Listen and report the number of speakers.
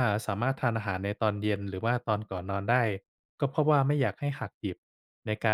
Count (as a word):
one